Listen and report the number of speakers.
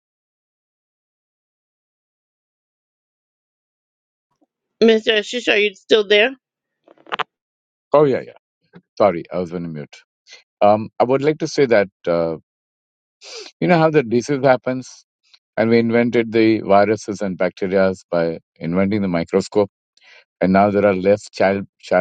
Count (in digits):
2